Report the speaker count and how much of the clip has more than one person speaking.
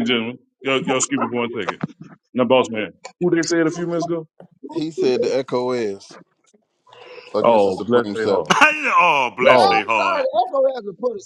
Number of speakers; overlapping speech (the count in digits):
4, about 17%